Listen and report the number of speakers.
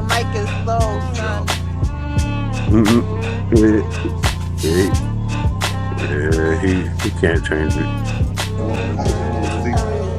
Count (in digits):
3